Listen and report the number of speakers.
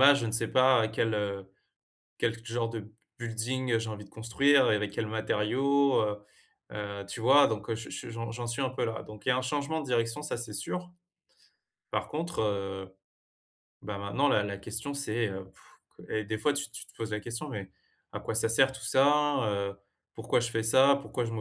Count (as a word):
one